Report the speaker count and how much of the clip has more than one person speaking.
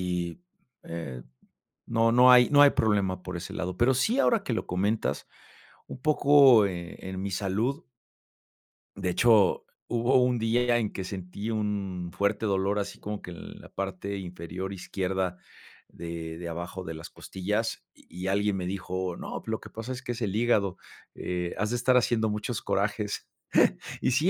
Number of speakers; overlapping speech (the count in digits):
1, no overlap